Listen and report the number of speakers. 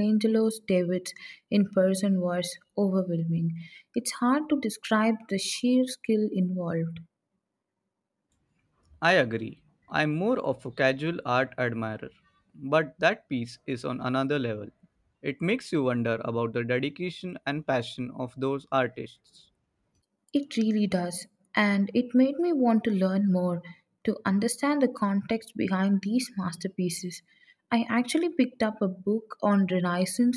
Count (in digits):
2